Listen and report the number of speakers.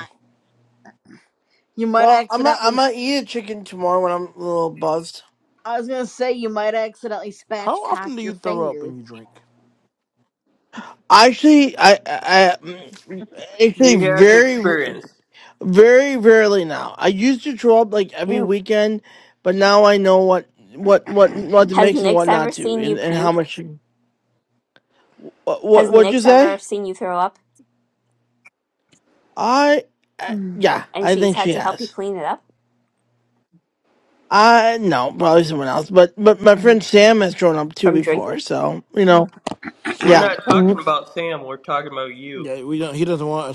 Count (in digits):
5